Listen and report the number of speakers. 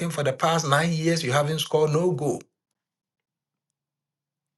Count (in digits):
1